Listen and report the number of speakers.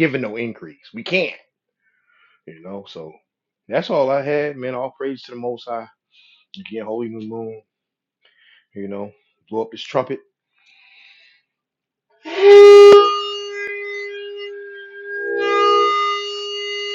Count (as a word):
one